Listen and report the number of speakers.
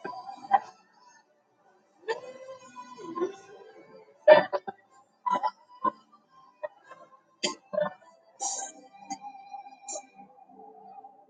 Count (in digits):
0